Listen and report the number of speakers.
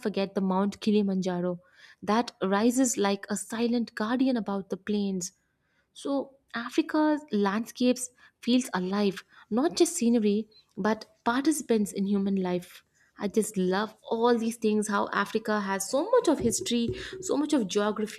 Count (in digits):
1